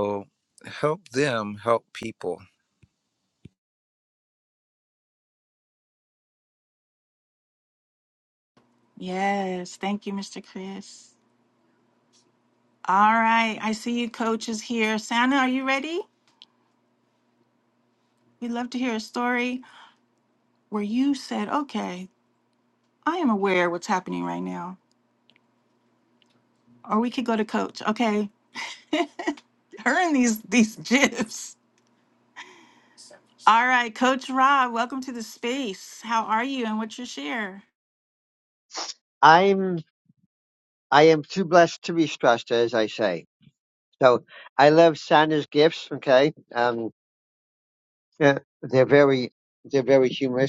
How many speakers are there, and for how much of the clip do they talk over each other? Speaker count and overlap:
3, no overlap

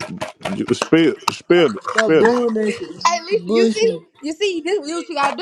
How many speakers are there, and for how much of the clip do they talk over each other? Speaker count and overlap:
3, about 28%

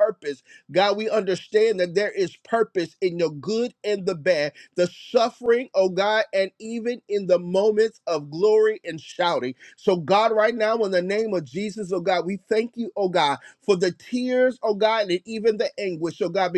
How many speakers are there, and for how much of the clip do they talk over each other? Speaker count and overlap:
1, no overlap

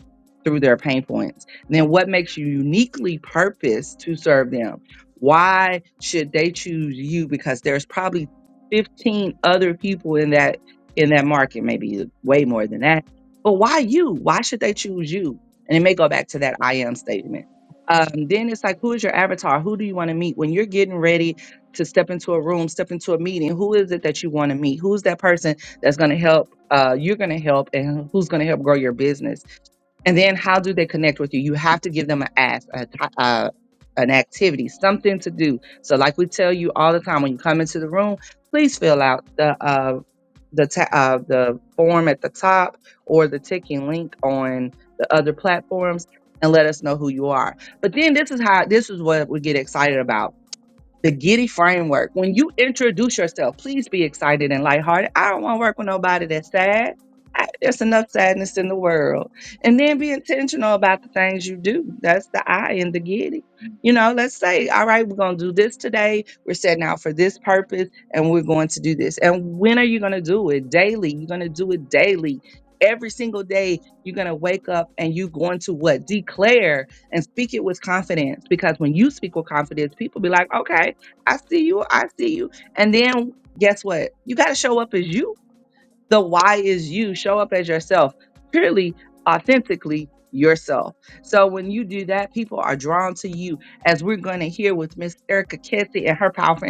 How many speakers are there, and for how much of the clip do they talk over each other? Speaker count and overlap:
1, no overlap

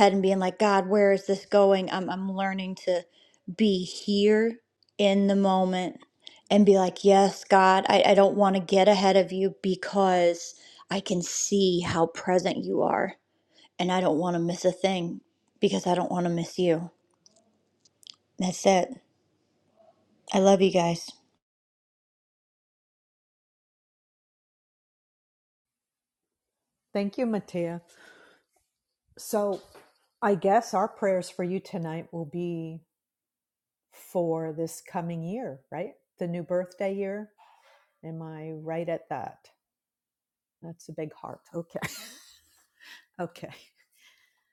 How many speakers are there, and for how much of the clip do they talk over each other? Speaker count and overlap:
2, no overlap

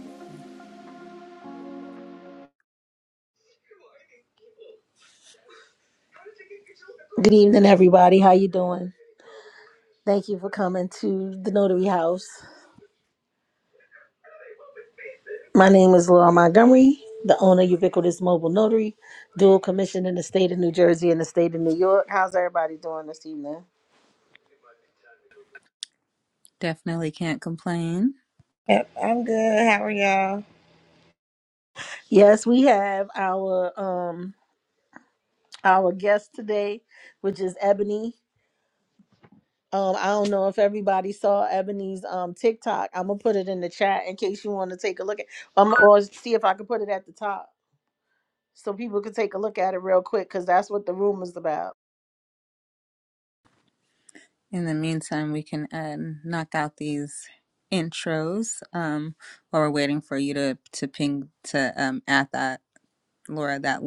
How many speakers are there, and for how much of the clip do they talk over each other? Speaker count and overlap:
3, no overlap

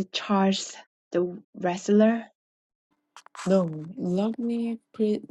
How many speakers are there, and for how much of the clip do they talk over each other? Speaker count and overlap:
2, no overlap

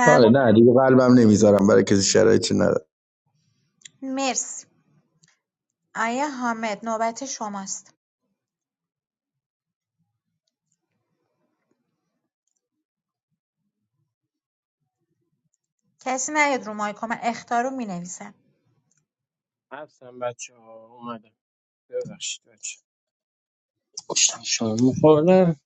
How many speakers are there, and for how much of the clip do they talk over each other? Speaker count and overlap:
3, about 1%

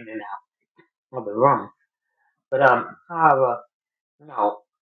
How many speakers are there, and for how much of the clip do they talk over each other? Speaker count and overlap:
1, no overlap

